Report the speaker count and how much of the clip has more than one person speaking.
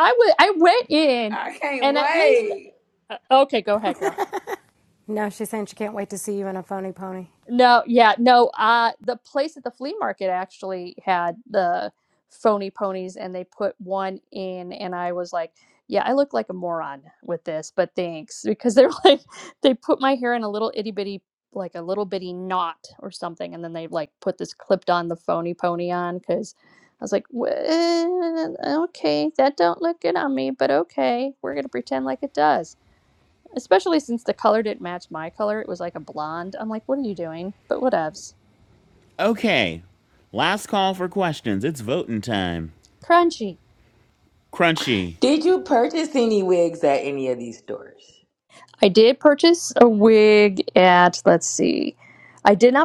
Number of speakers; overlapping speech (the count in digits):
5, about 2%